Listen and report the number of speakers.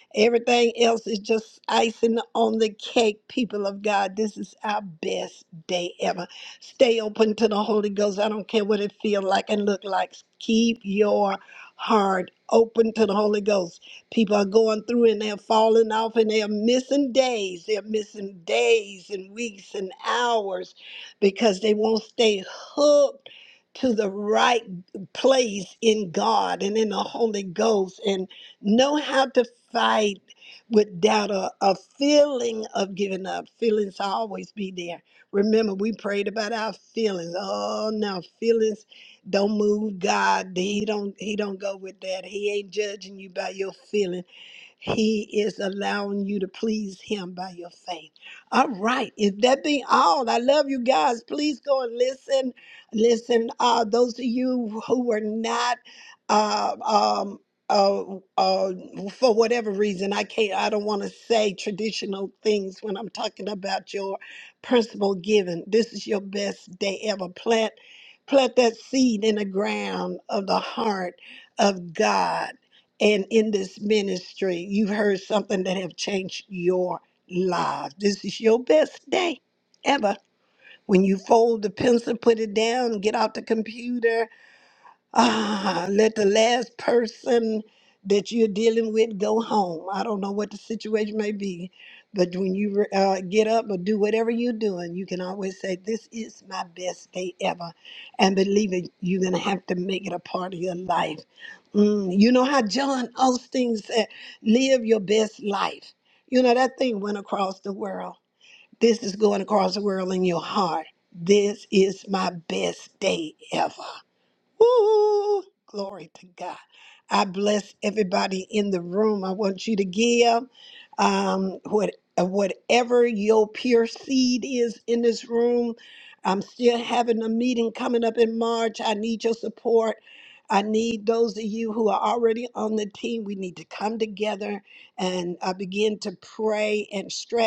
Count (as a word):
one